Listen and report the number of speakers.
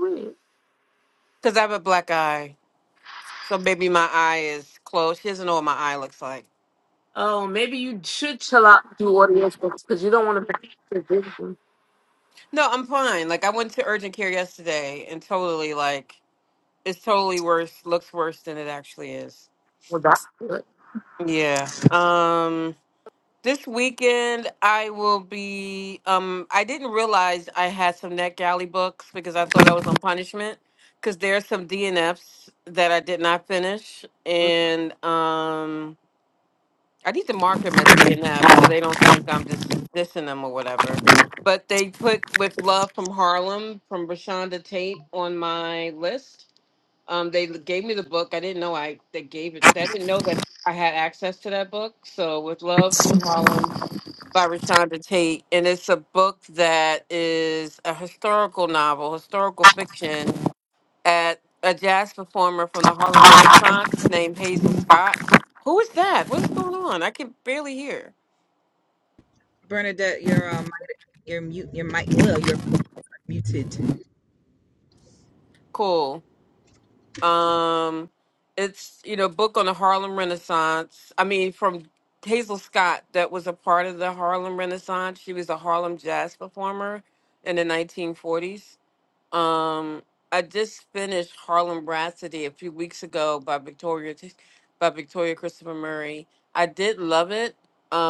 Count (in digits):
3